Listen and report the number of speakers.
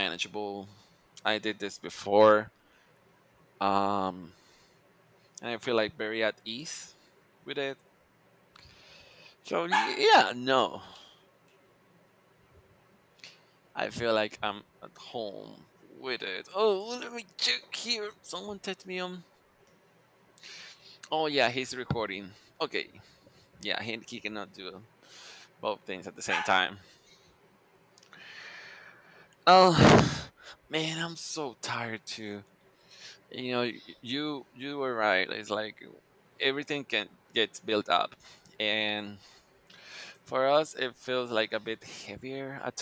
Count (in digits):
1